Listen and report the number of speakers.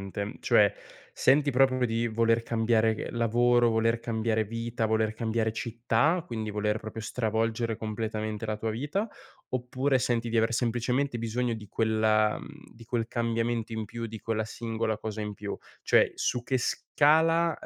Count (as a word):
one